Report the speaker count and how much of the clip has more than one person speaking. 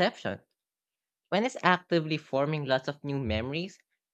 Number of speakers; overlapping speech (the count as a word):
one, no overlap